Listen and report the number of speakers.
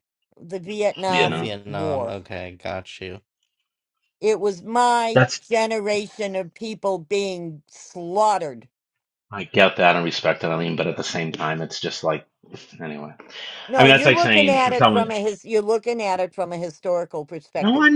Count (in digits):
3